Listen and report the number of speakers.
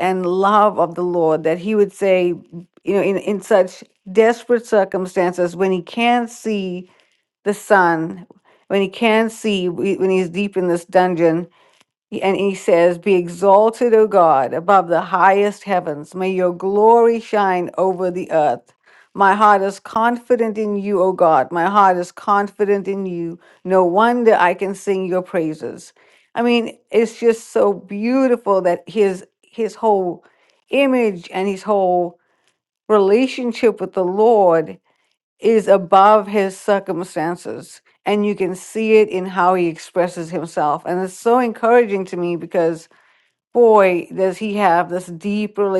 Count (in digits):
1